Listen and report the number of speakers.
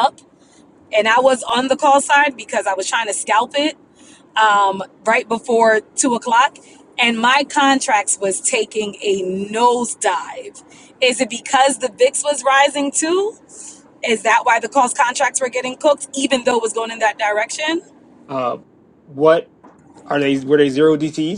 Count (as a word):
two